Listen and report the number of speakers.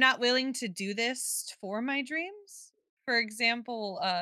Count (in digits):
1